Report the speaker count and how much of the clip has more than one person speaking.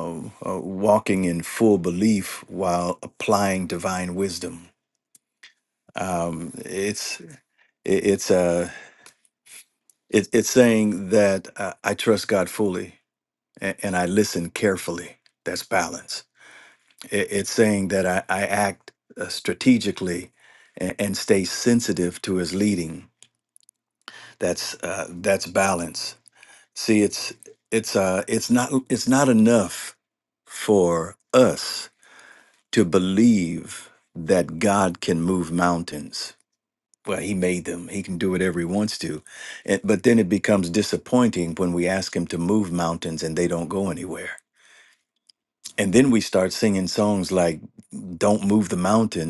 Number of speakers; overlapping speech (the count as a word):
one, no overlap